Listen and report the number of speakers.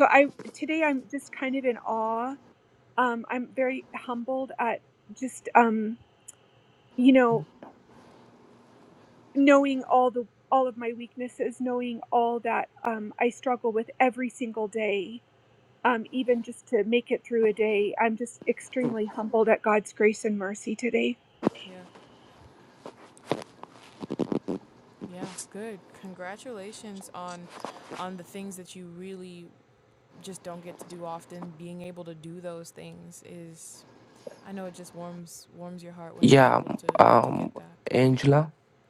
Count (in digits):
3